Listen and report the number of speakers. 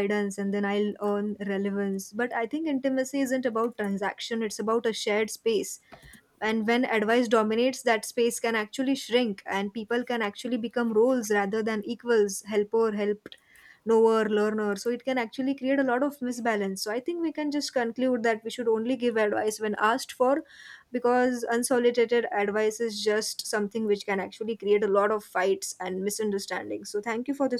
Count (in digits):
1